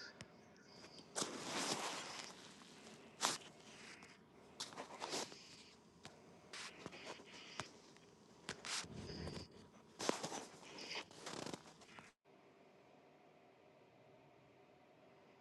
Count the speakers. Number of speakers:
0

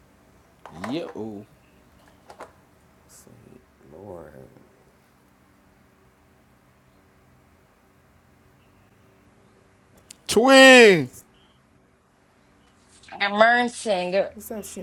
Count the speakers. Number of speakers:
3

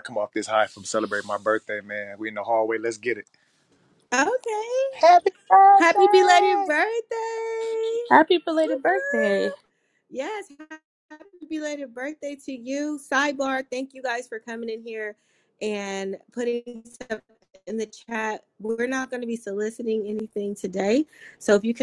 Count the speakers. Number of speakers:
4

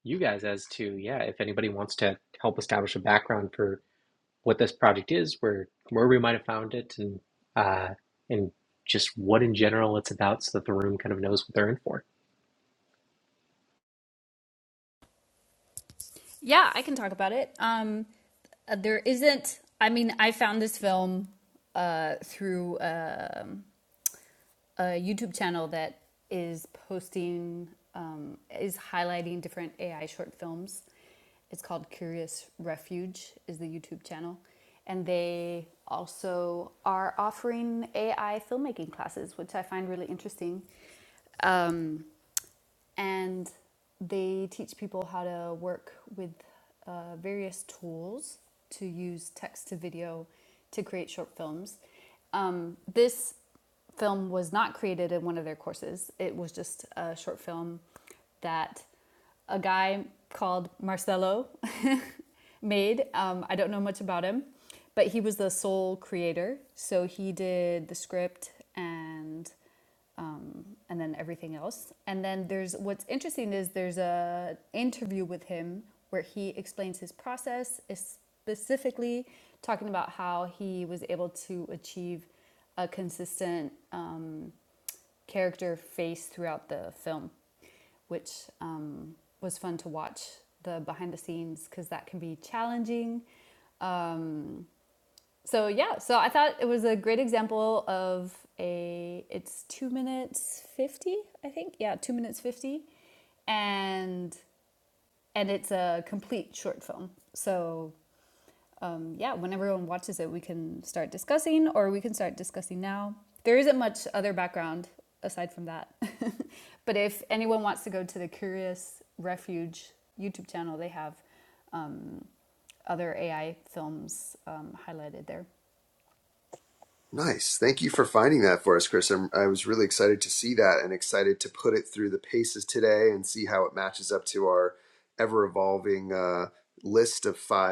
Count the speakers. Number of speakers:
3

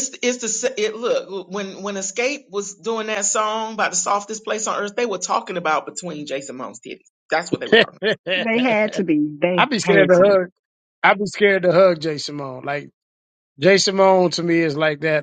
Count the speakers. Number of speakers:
3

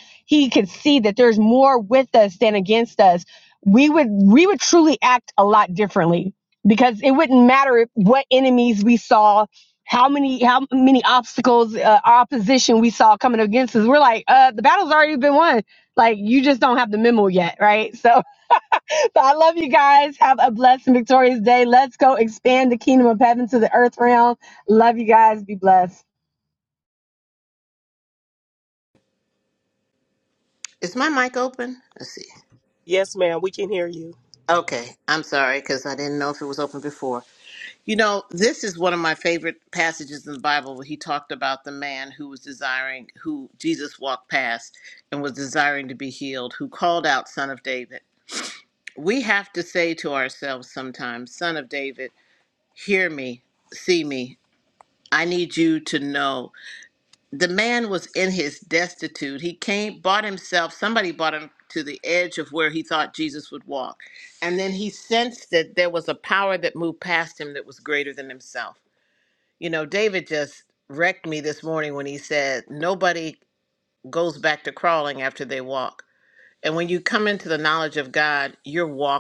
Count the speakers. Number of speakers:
3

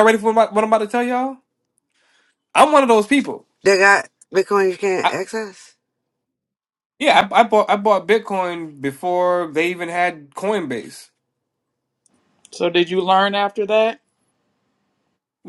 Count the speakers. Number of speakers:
3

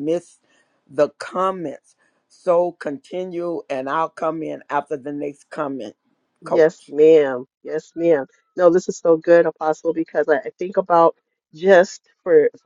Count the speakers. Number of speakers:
2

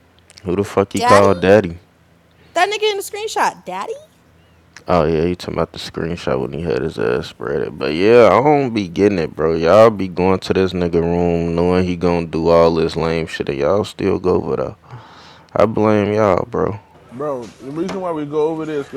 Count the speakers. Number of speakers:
3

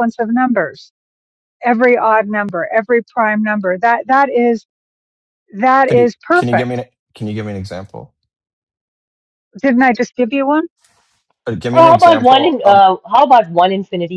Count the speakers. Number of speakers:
3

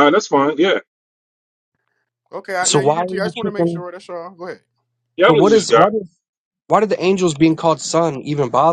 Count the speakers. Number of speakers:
3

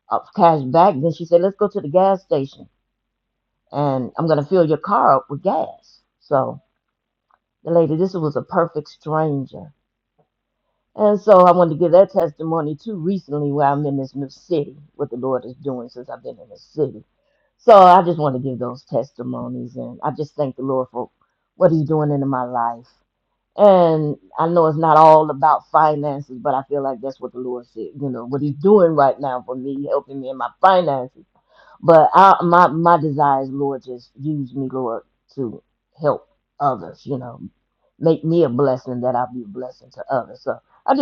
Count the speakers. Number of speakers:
1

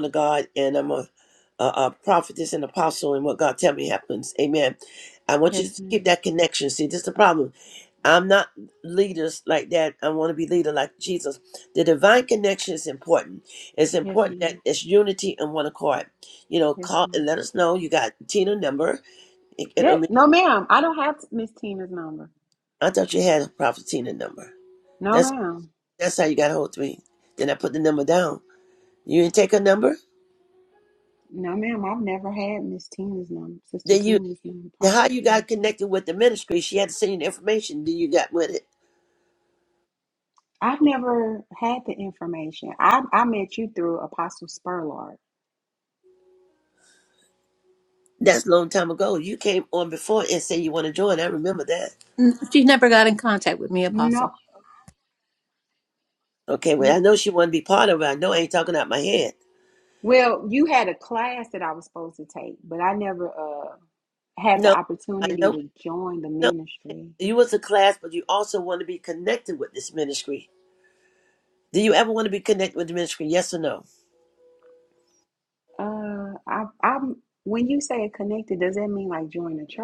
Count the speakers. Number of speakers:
3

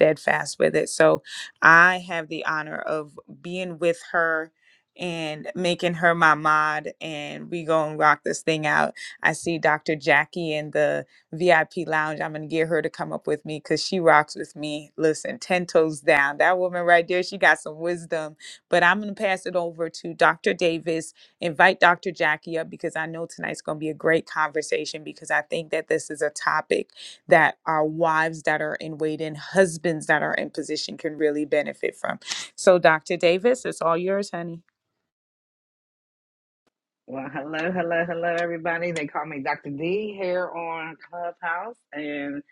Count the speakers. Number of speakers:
2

